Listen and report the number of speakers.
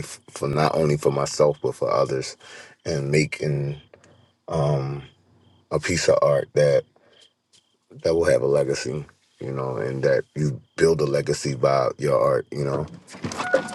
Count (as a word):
one